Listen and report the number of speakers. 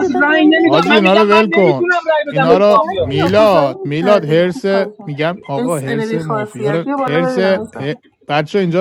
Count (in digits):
3